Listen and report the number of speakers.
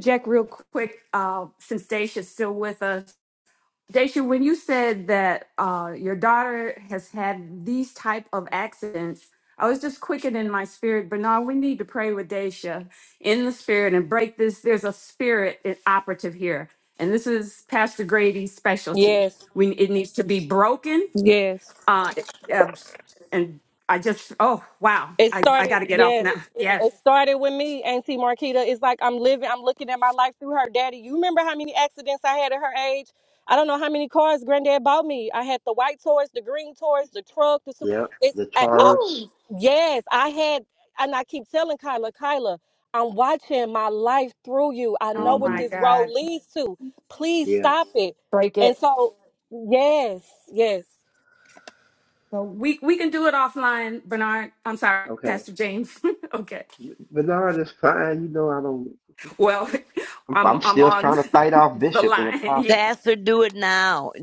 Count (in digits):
4